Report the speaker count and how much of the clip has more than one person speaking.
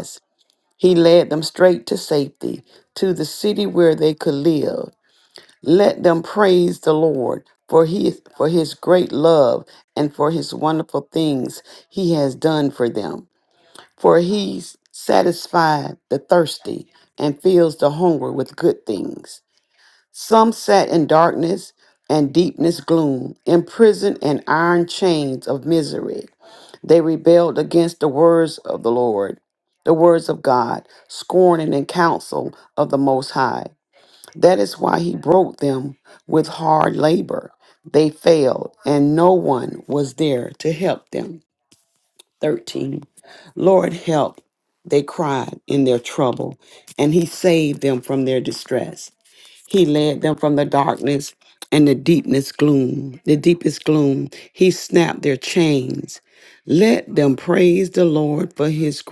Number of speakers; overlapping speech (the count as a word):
one, no overlap